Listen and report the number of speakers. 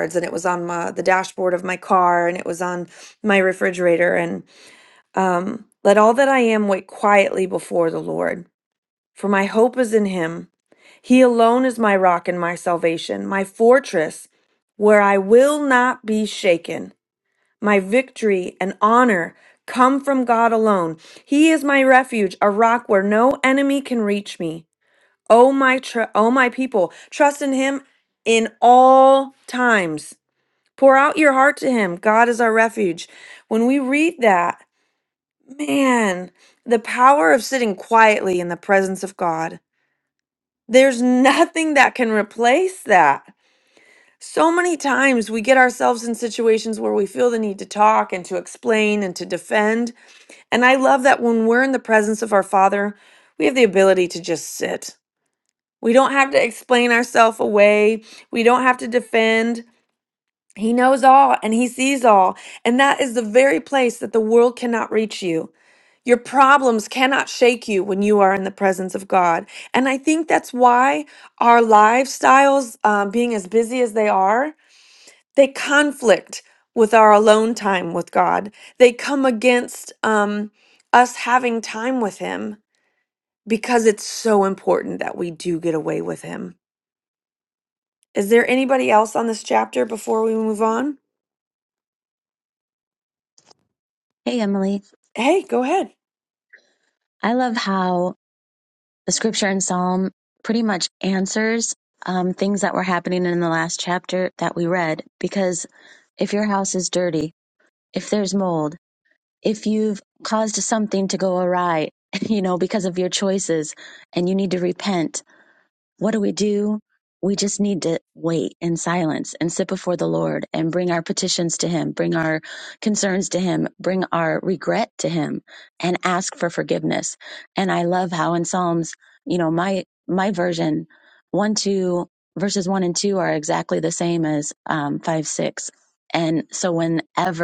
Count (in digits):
2